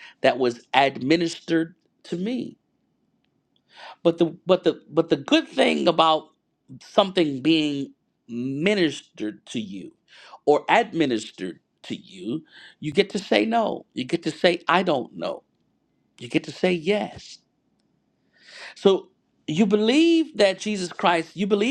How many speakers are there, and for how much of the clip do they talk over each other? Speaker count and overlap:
one, no overlap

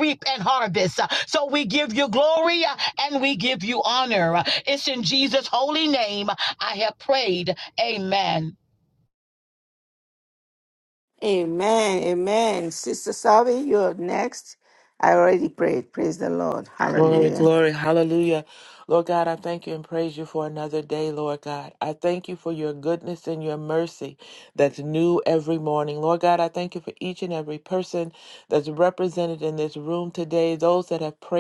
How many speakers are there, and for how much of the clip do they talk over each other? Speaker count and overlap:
three, about 2%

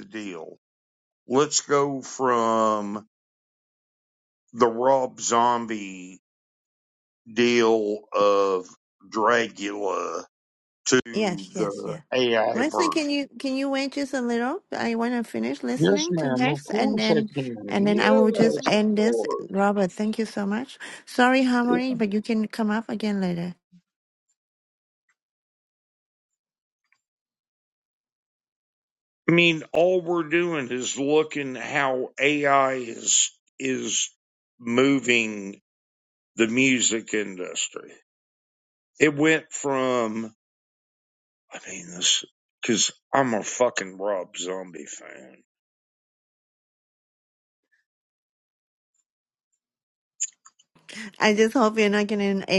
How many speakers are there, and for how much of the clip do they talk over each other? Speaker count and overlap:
two, about 9%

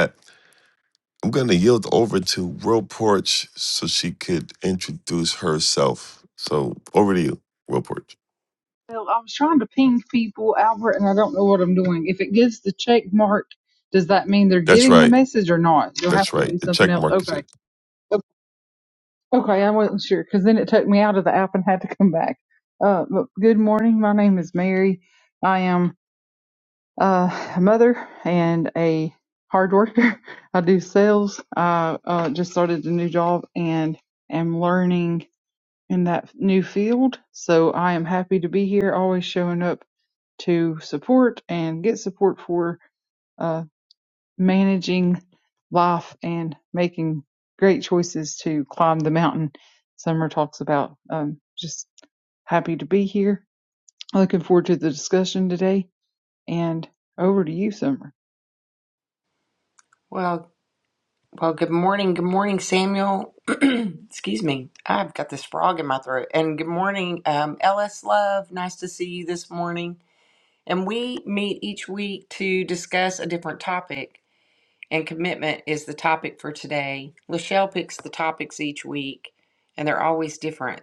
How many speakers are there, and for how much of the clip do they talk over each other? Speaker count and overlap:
three, about 2%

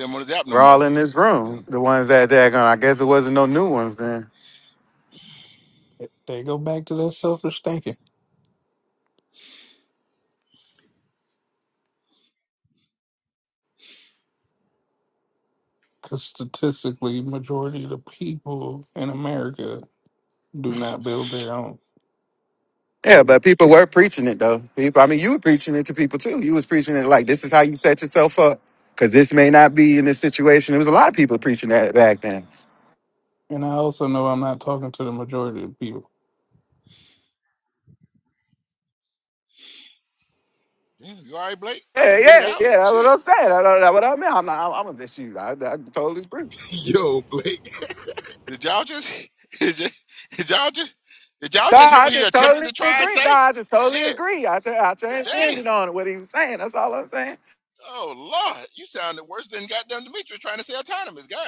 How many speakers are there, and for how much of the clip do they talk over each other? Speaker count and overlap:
four, about 7%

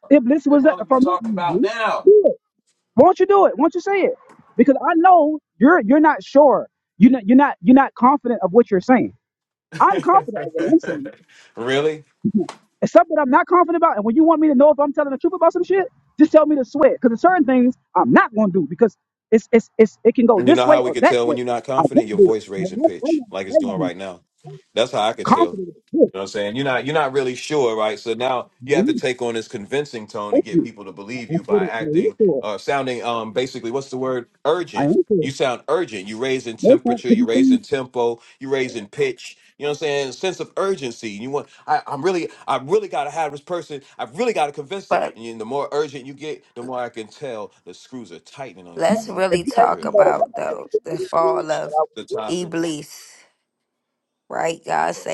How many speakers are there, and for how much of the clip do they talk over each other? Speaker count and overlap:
three, about 17%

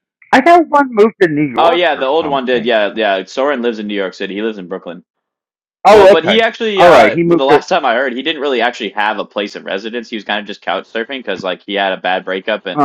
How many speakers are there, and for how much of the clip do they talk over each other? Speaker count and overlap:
two, about 19%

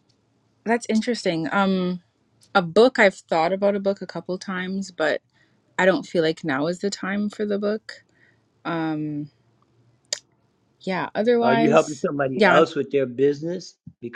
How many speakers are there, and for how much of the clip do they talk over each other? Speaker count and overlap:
two, about 4%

